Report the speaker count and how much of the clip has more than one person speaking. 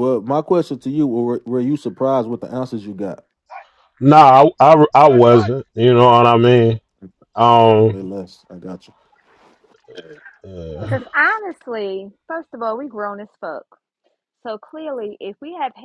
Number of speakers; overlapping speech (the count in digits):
3, no overlap